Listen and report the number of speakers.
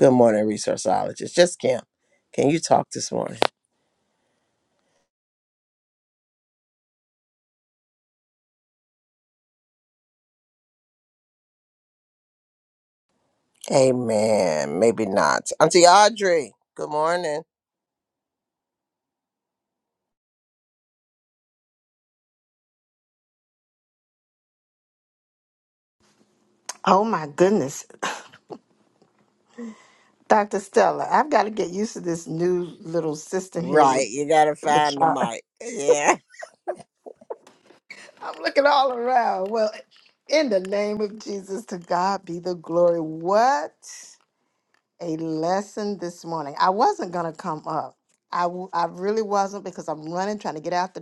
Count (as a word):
two